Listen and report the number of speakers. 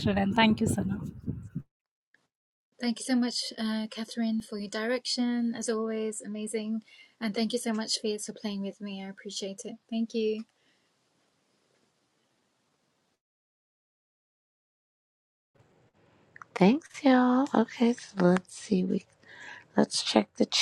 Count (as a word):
three